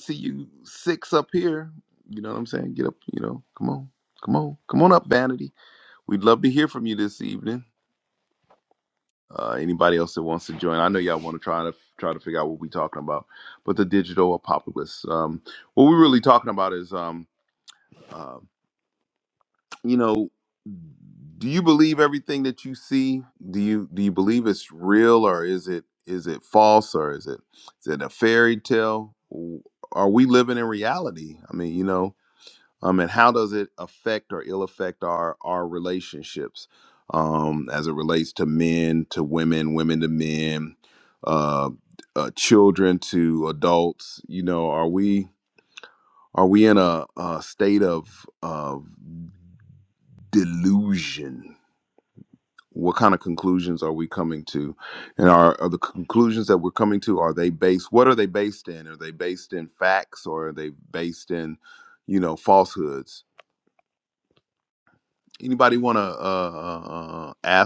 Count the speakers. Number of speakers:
1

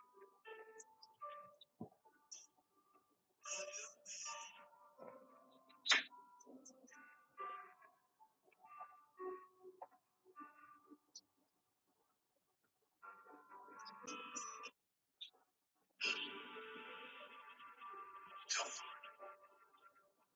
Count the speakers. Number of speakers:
0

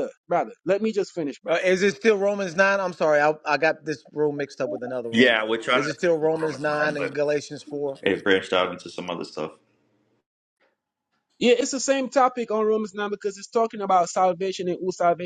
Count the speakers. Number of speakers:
3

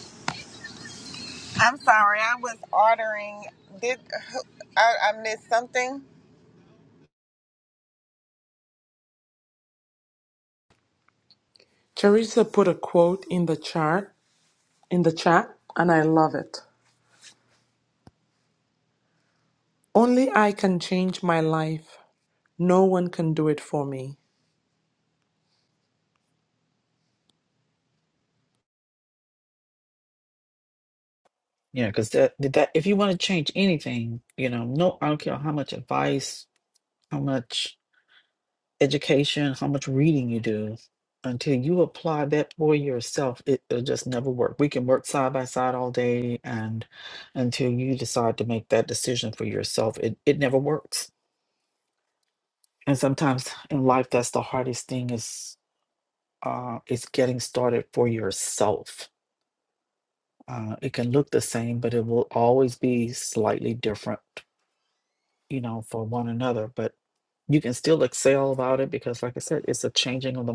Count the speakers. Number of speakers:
3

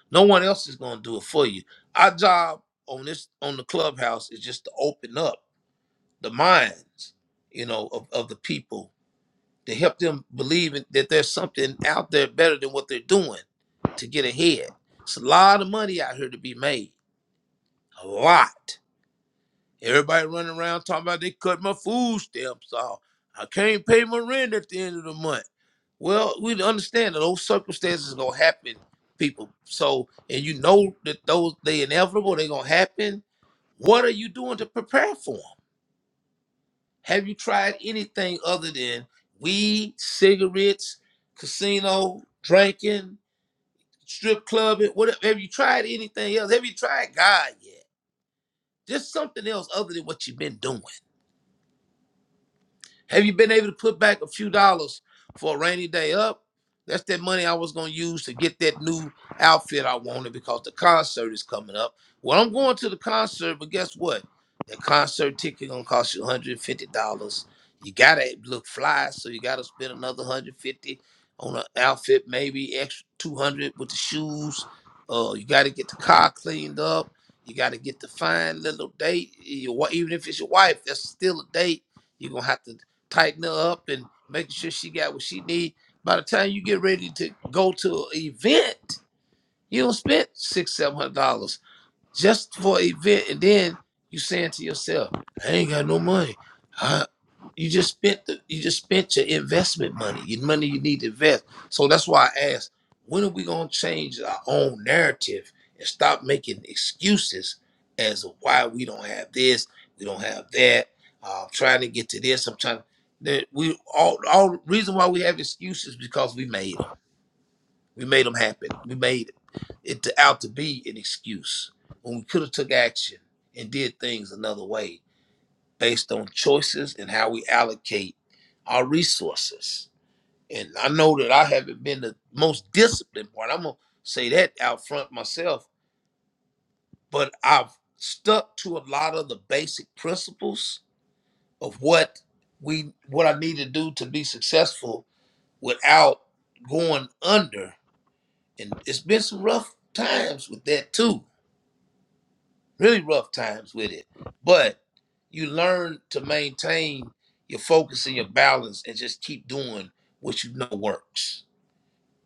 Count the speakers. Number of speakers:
1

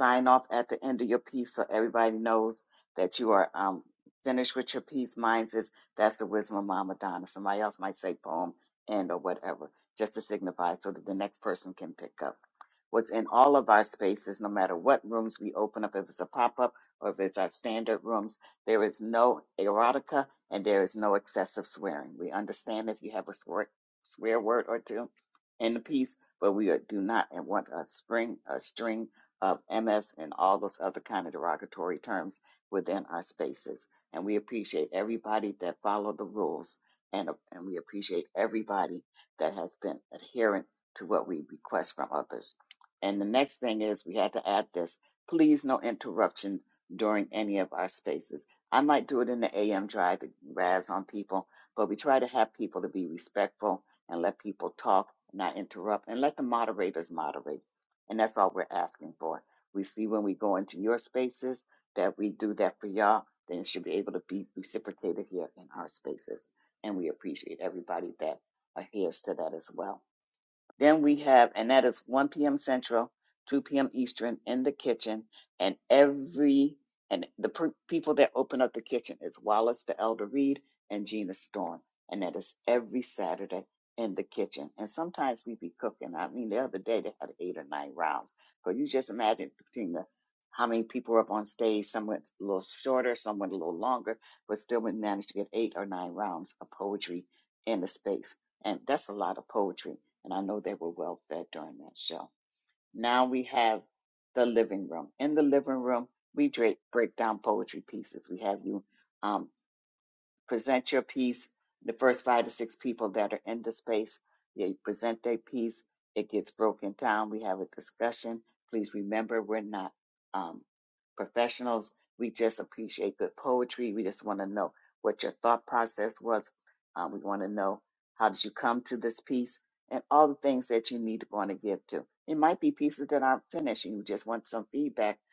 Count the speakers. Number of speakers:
1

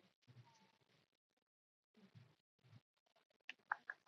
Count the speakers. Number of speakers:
0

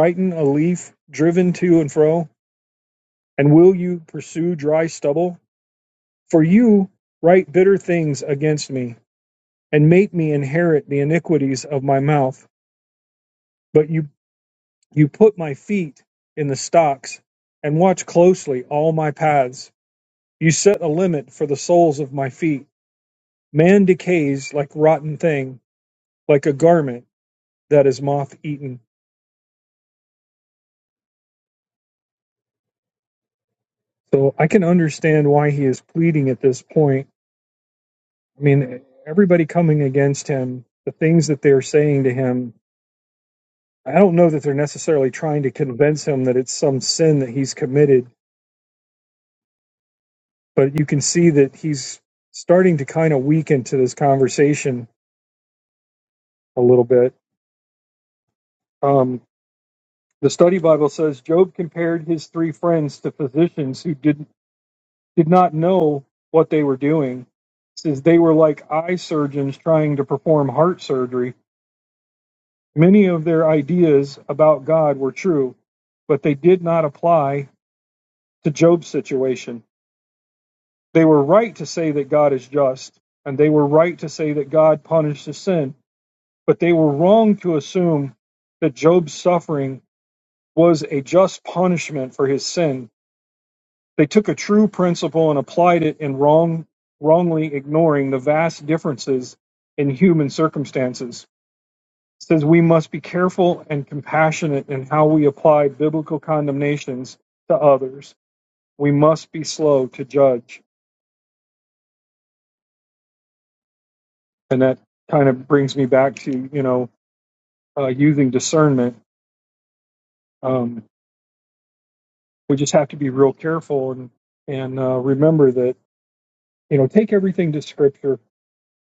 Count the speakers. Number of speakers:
1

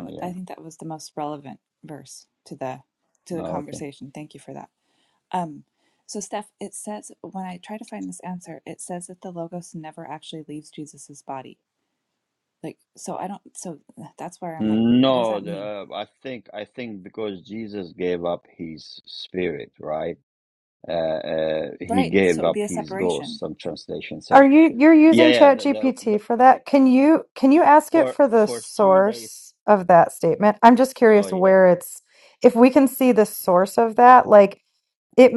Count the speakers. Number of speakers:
3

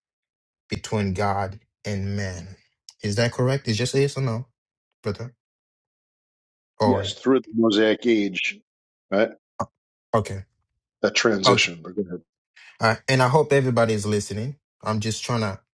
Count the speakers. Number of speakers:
2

